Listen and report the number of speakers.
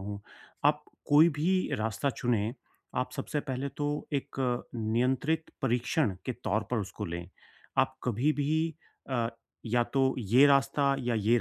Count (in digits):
1